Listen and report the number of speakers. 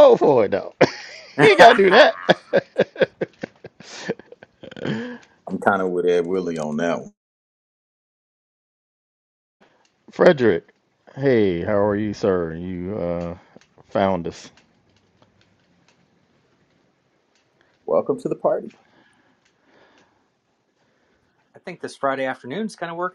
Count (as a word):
three